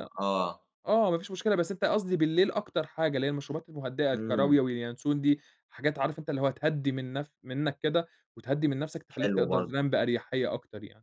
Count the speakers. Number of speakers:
2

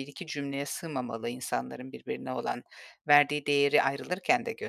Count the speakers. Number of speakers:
1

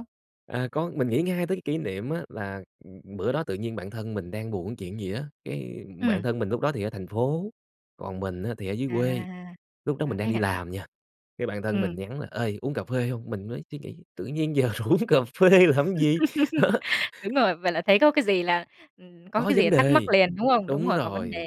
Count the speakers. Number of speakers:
2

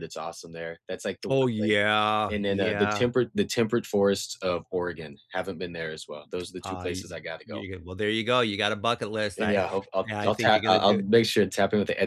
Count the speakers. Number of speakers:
2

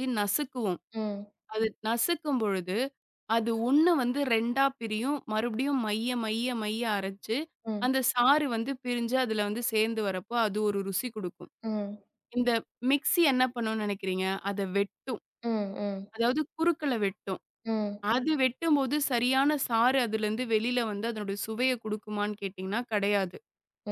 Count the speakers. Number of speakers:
2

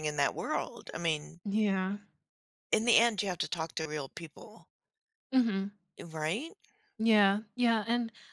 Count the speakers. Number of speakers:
2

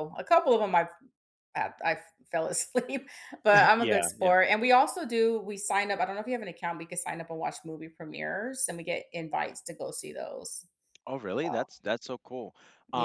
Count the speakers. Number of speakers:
2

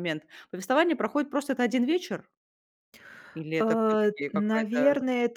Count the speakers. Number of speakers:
2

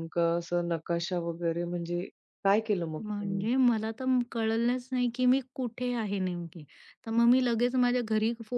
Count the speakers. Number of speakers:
2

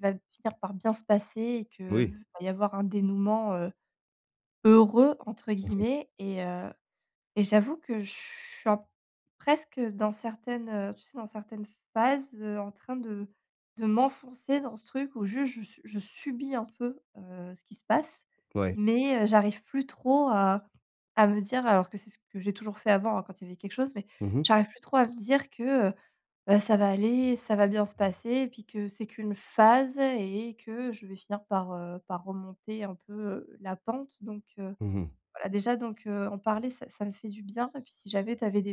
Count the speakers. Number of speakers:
2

